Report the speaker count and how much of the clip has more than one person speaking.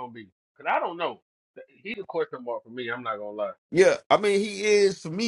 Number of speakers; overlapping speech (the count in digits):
2, no overlap